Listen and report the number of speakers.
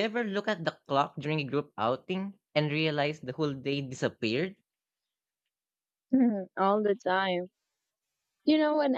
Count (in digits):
2